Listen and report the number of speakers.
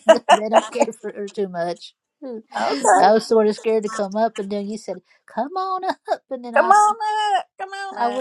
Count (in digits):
2